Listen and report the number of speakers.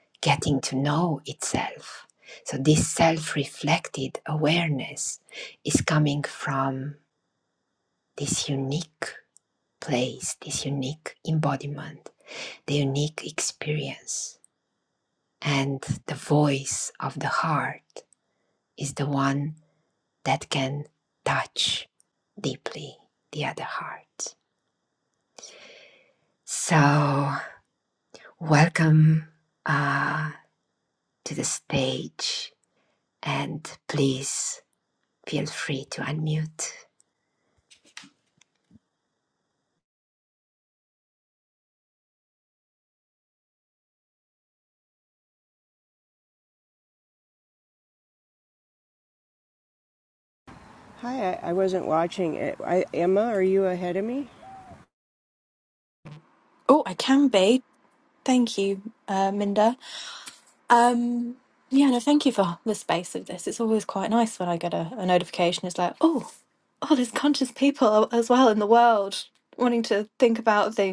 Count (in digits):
3